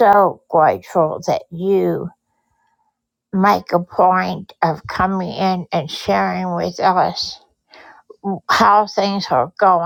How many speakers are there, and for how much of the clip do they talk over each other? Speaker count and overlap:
one, no overlap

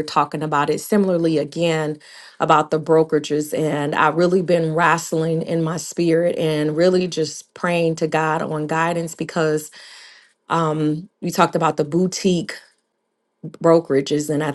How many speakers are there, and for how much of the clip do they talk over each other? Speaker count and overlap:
one, no overlap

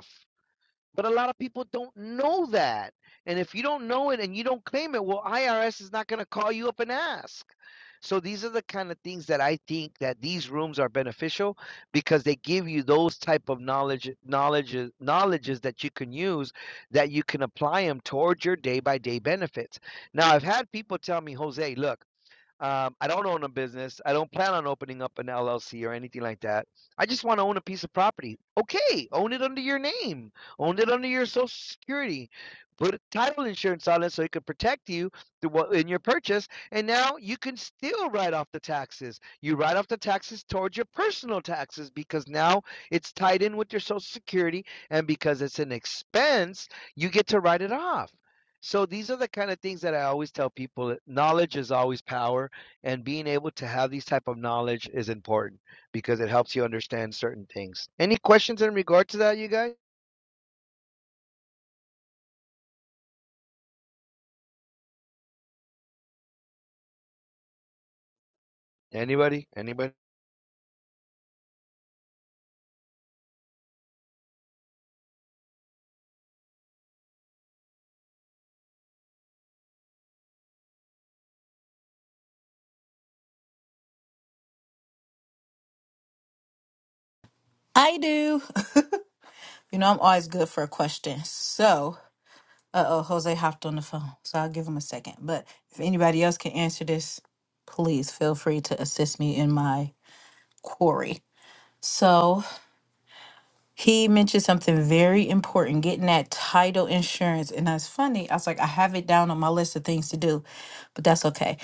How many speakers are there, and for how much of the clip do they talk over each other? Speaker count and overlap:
two, no overlap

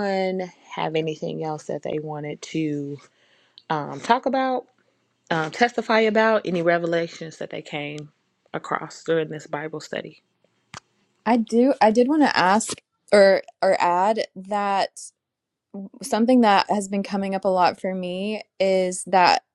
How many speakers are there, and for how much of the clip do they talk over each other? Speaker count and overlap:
two, no overlap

